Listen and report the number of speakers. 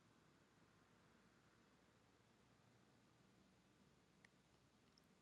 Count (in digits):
0